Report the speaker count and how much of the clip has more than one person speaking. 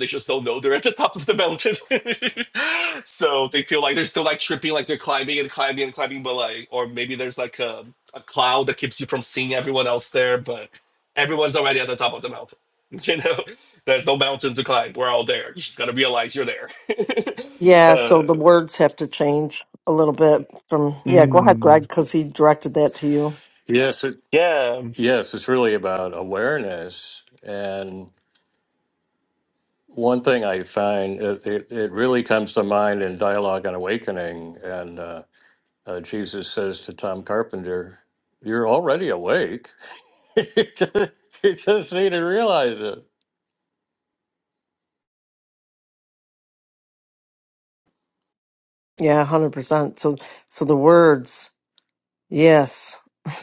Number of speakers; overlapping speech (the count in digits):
3, about 2%